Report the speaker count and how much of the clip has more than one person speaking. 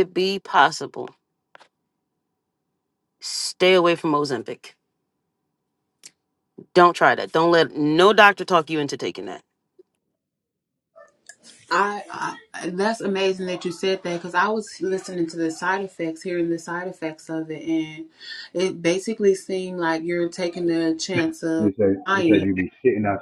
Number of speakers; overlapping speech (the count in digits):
3, about 2%